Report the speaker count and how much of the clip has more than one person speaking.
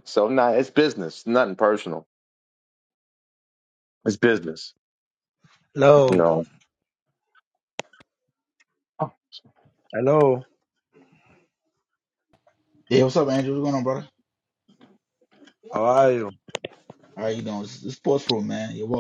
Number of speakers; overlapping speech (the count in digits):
3, about 1%